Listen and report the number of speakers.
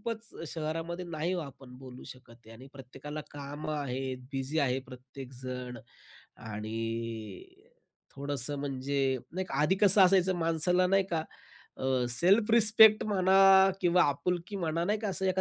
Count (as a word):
one